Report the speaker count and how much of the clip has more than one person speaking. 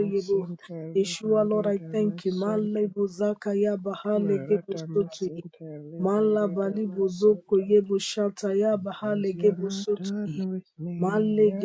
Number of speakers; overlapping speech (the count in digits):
2, about 63%